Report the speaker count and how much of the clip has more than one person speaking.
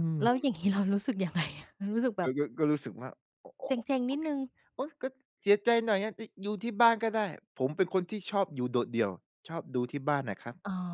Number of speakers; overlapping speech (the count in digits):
2, about 5%